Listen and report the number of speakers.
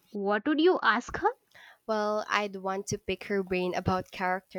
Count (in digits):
2